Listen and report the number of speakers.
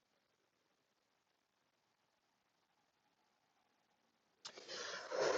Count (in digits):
0